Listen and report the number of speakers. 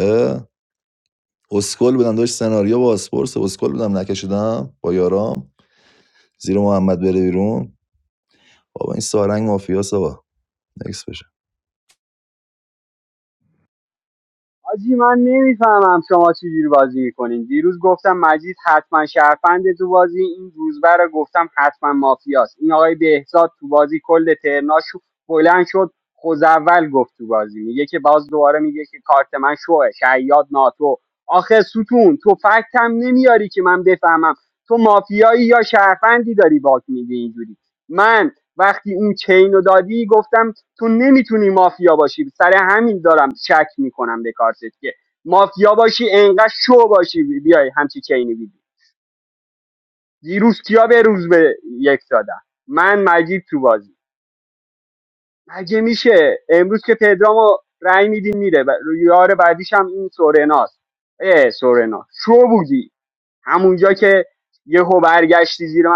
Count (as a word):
two